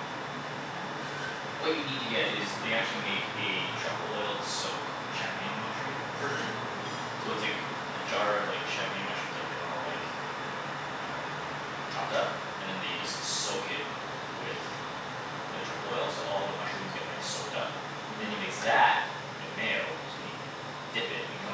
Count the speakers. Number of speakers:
one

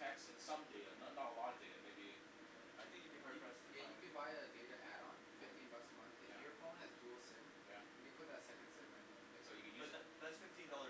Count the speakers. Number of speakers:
three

